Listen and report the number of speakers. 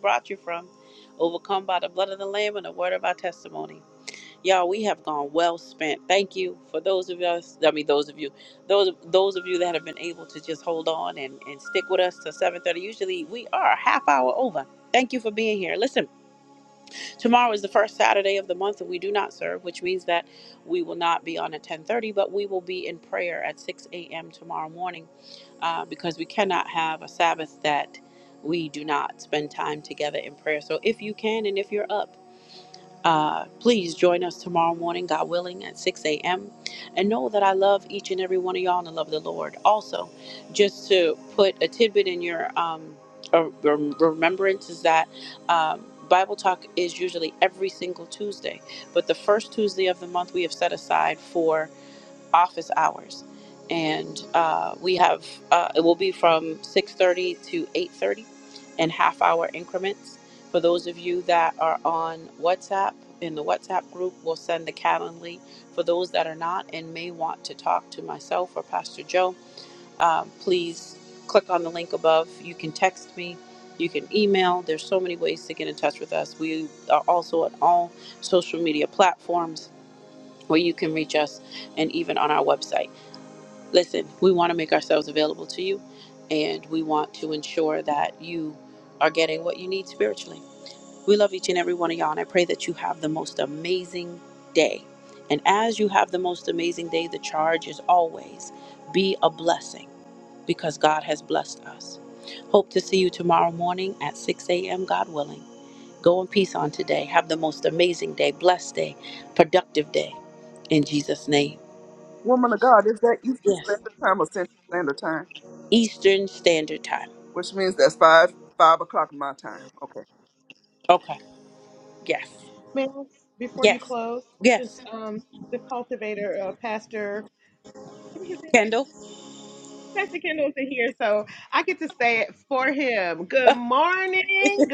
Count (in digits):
3